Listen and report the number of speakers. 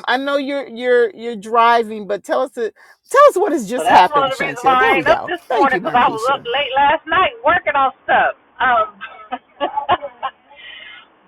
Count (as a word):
two